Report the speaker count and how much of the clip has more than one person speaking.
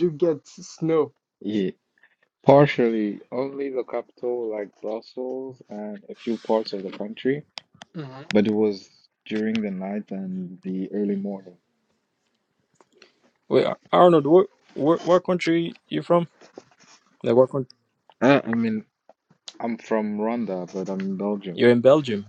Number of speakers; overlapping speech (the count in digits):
3, under 1%